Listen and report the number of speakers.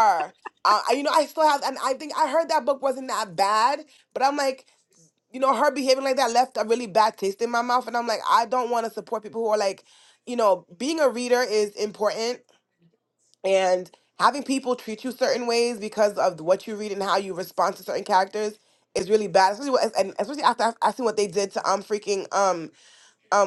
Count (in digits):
1